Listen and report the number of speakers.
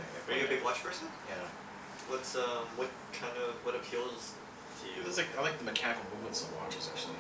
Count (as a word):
two